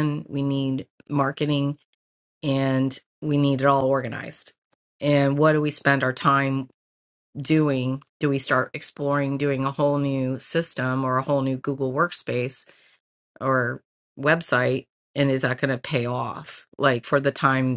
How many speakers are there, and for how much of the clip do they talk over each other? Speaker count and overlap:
one, no overlap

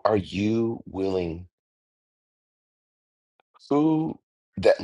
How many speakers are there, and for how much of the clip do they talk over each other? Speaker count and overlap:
one, no overlap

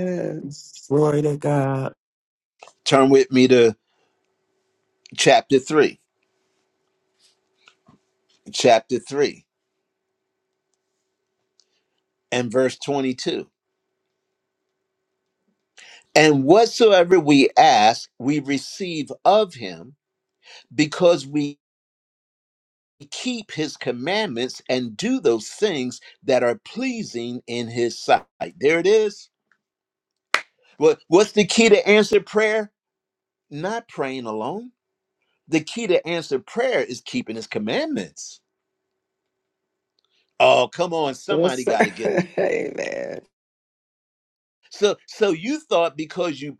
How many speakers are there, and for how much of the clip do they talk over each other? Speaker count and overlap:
three, about 1%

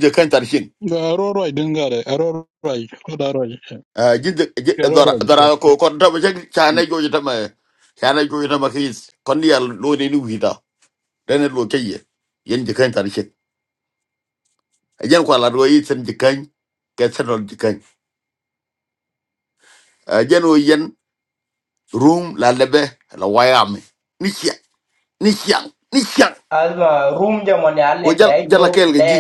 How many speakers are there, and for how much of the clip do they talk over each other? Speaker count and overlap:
three, about 5%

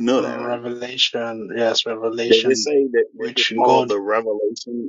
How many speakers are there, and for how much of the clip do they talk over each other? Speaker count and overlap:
two, about 31%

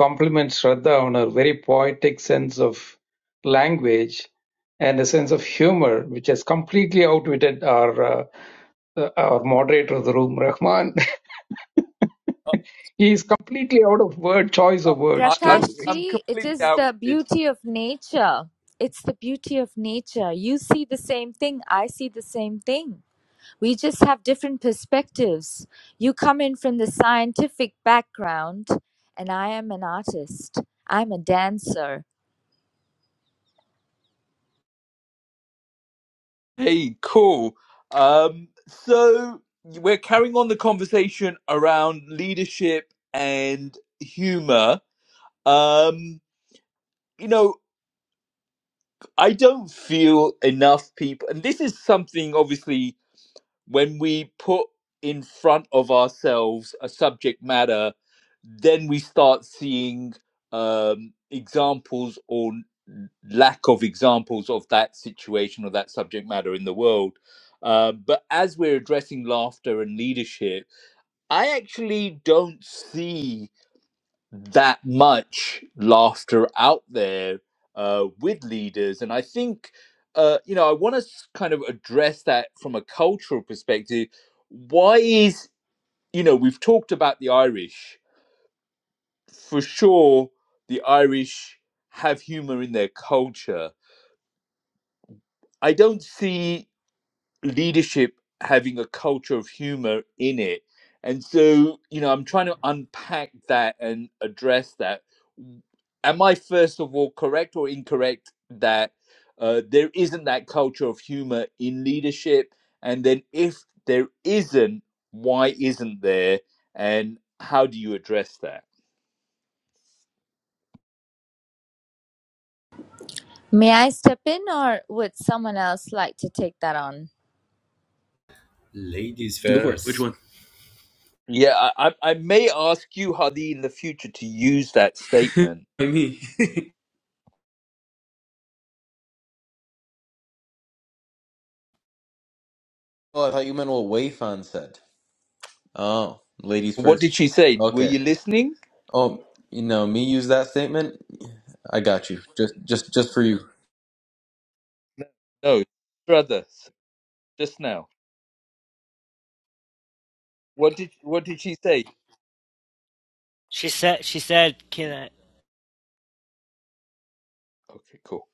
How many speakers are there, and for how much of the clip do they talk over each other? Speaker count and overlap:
six, about 2%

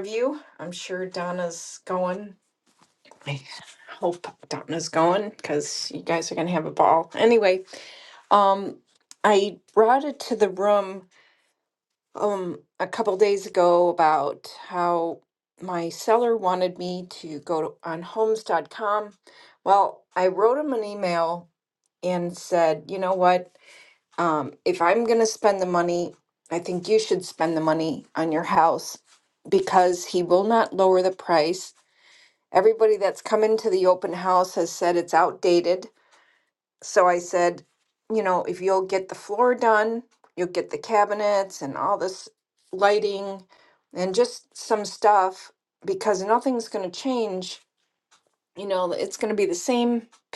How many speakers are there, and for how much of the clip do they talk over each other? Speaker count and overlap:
one, no overlap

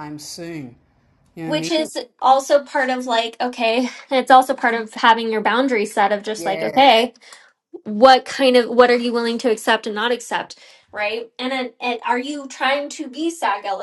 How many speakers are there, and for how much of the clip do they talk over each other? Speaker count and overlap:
two, about 6%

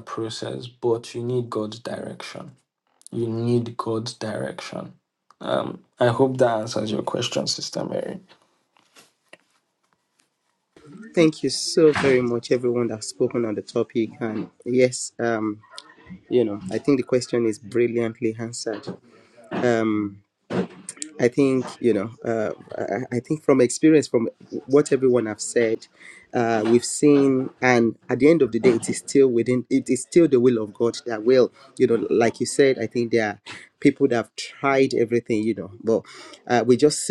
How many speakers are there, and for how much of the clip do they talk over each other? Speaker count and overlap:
two, no overlap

